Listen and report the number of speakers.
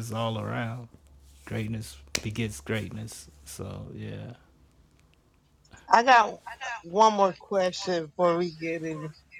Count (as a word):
two